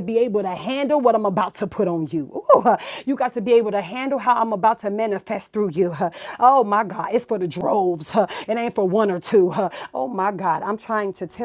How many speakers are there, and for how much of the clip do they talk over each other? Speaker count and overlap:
1, no overlap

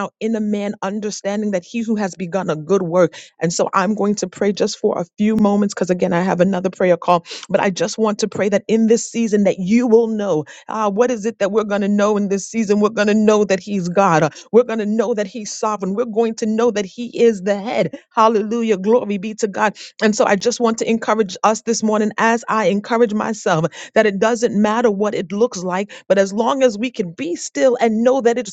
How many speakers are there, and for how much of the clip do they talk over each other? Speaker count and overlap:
1, no overlap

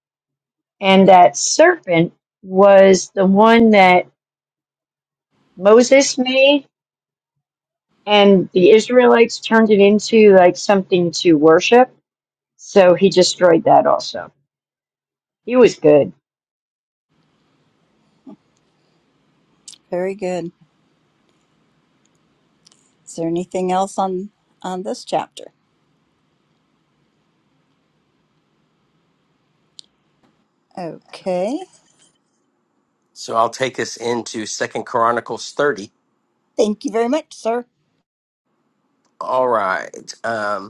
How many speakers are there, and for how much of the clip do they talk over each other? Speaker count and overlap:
3, no overlap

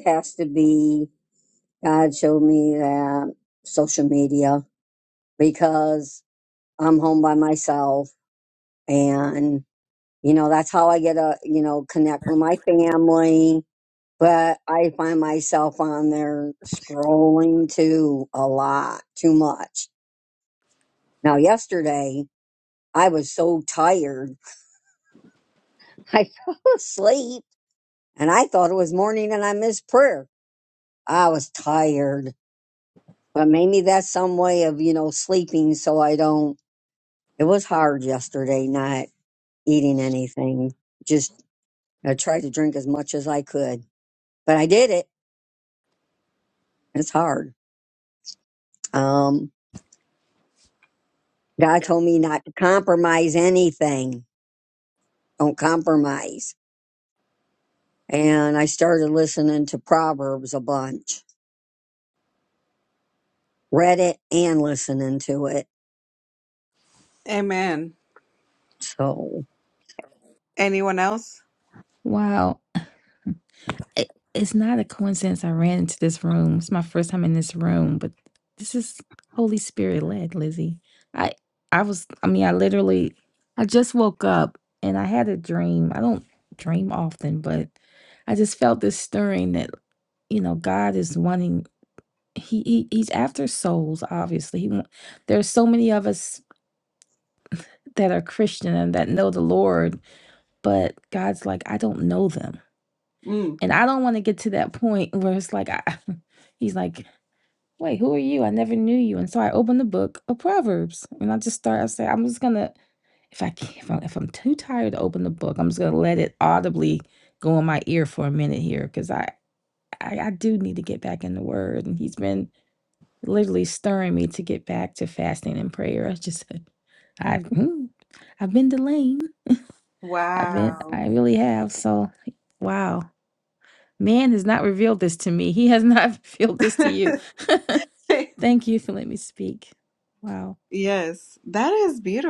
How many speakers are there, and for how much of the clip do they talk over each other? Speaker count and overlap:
3, under 1%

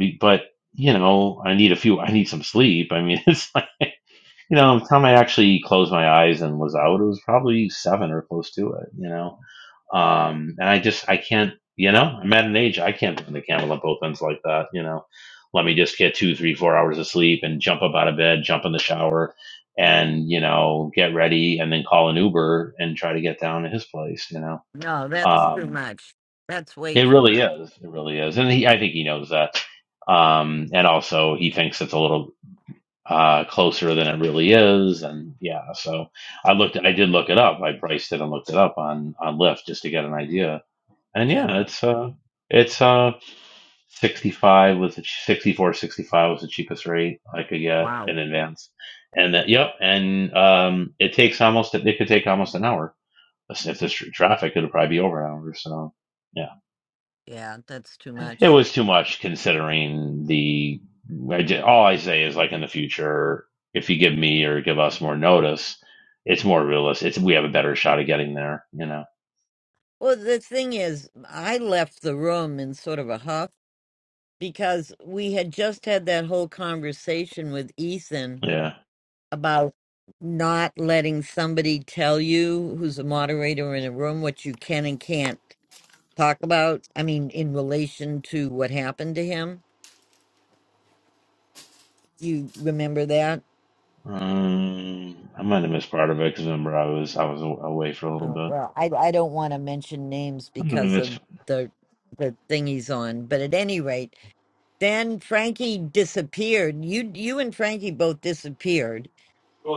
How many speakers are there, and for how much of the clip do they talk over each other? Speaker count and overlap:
2, about 2%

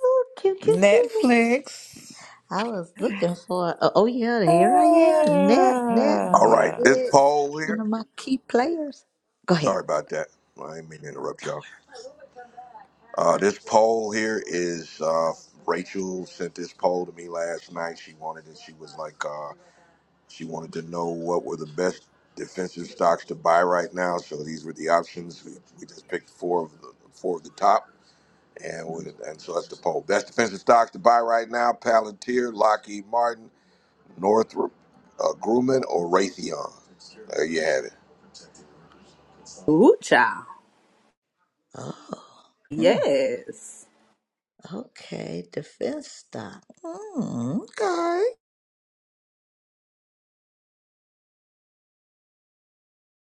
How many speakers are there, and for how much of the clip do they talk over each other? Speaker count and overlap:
4, about 5%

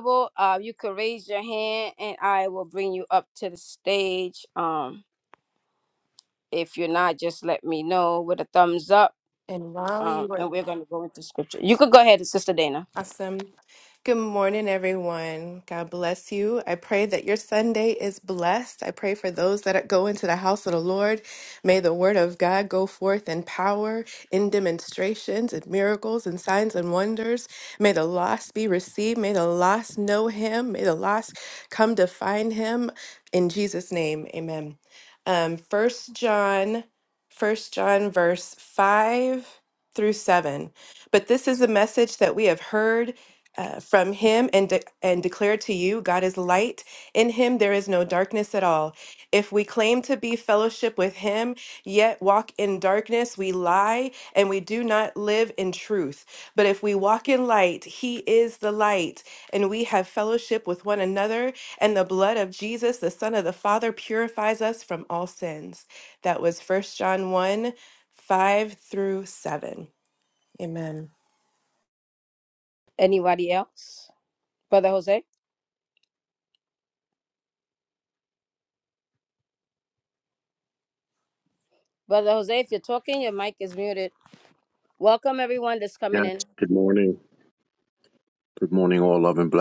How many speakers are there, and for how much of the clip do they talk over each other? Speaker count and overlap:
3, about 1%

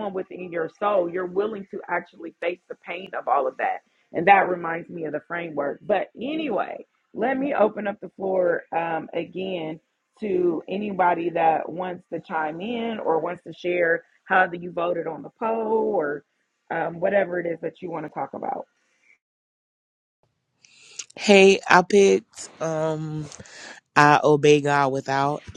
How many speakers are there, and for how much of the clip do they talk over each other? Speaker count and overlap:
2, no overlap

